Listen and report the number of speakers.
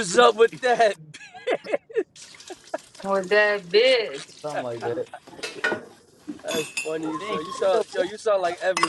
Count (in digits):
3